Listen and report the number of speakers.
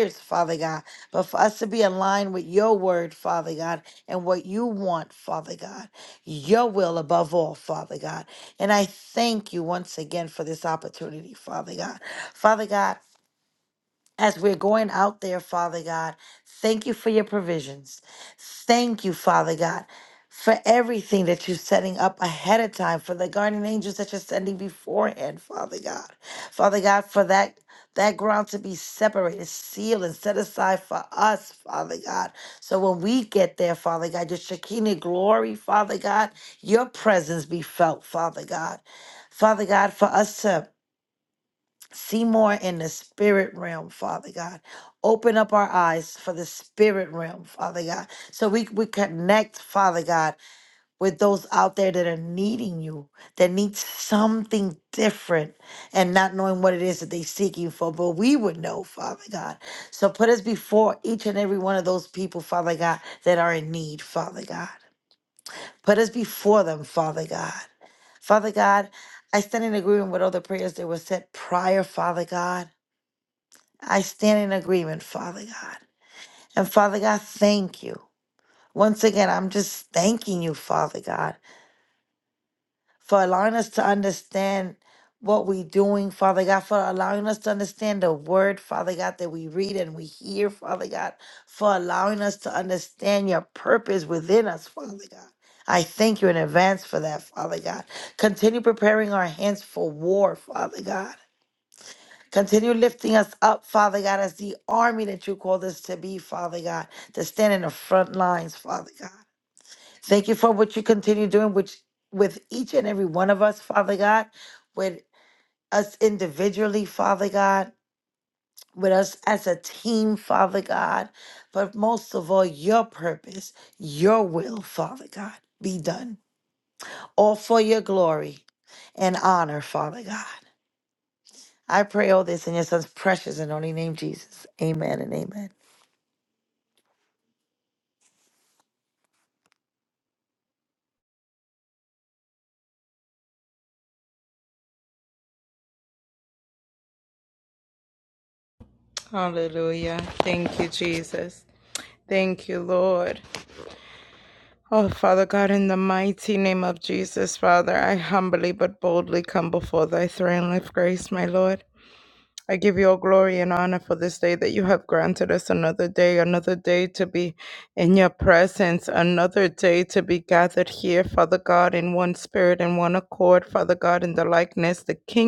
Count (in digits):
2